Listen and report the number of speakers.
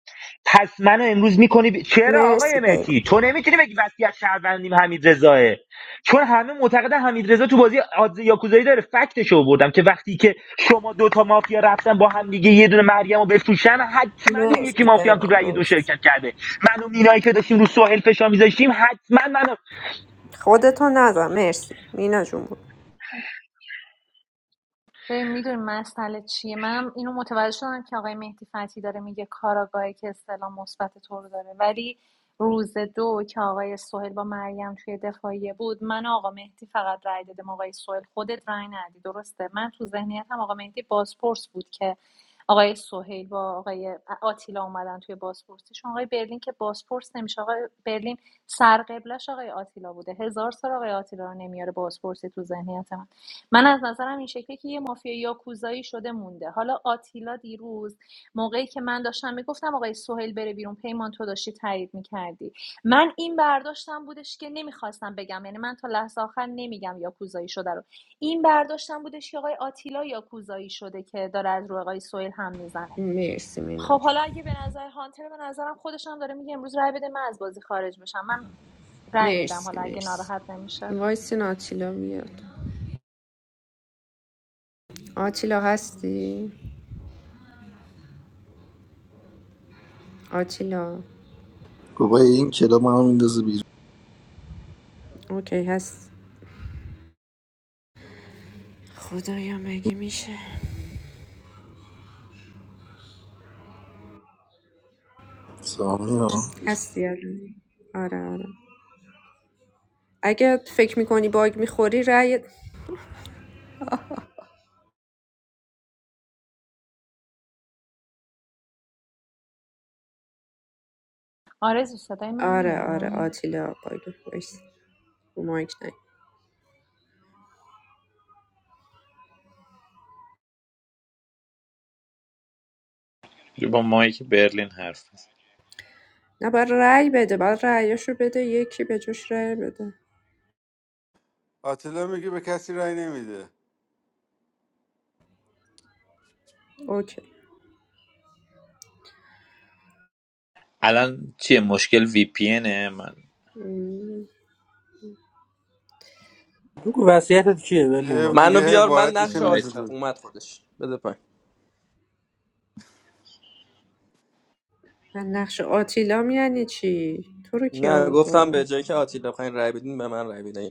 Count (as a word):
eight